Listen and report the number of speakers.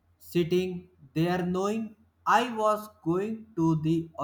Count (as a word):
one